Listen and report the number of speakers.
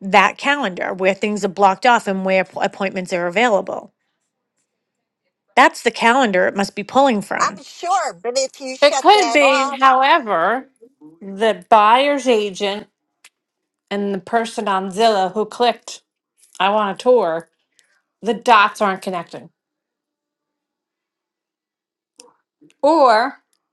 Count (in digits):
3